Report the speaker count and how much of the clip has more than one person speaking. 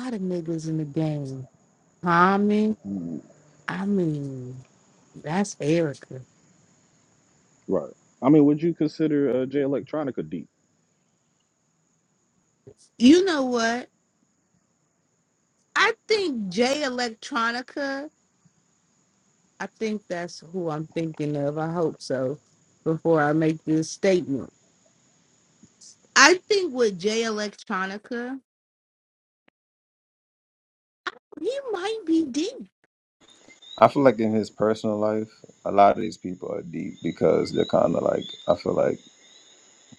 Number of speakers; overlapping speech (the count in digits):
3, no overlap